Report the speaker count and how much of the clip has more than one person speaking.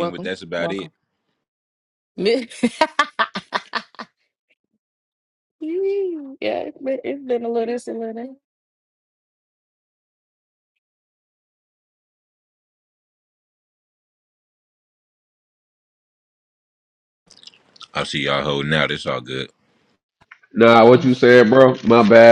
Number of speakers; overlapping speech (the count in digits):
3, about 4%